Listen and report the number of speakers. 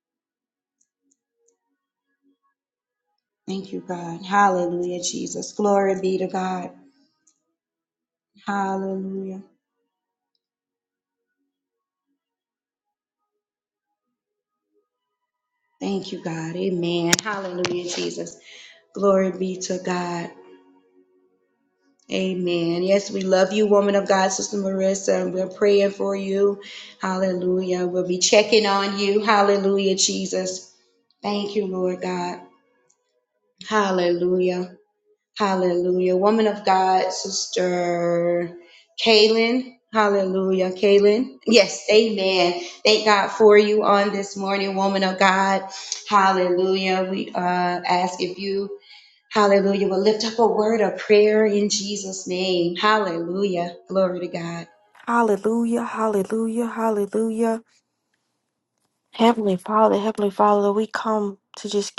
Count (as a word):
two